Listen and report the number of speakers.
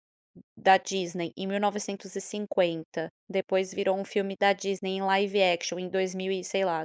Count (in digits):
1